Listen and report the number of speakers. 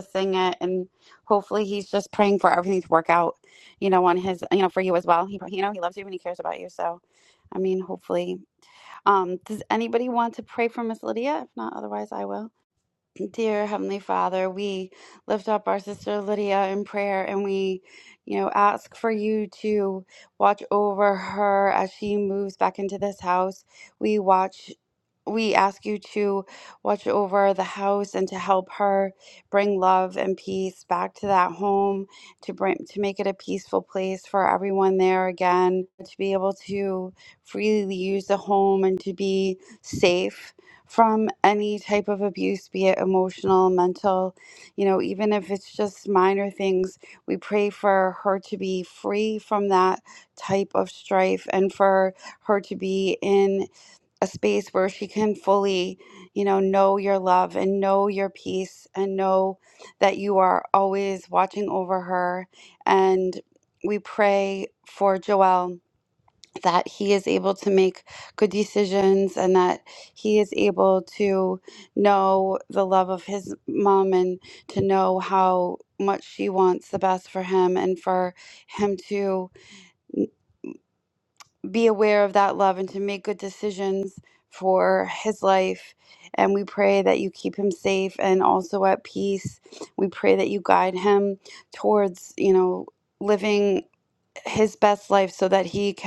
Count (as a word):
one